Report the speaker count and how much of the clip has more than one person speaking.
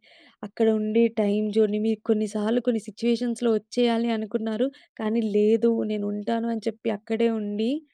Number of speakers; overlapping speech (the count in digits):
1, no overlap